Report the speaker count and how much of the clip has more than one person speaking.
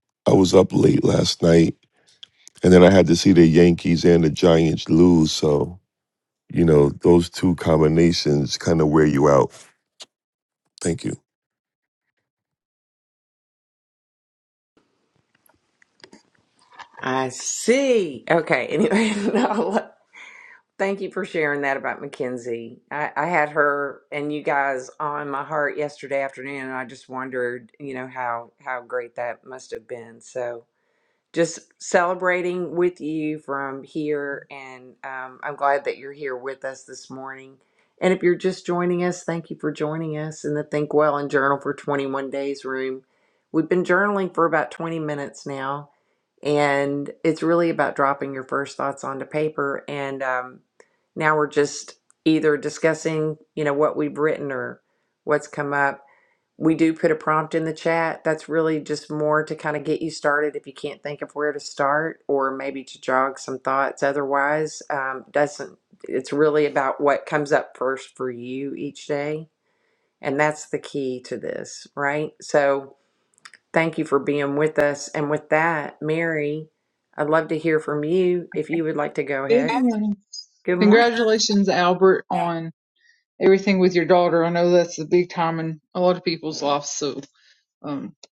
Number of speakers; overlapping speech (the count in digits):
3, about 1%